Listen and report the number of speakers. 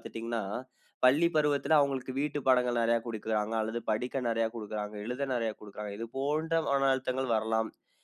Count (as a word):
one